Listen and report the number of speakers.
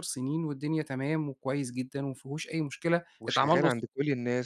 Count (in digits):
2